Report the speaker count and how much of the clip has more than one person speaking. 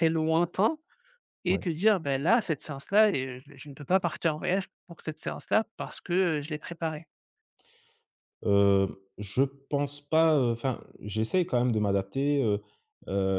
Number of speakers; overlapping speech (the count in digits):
2, about 1%